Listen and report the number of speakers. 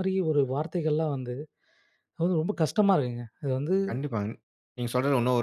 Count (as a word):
two